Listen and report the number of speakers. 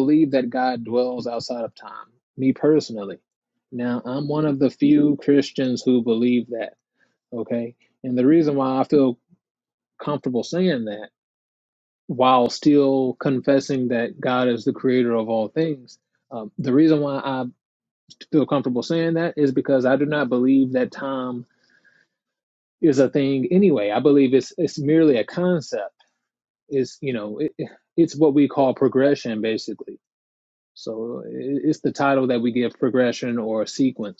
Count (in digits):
1